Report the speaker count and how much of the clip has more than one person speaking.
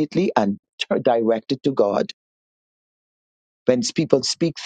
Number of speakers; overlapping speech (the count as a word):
one, no overlap